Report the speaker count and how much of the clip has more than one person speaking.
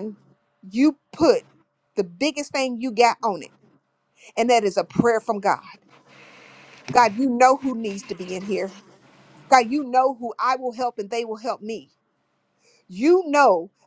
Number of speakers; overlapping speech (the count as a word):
one, no overlap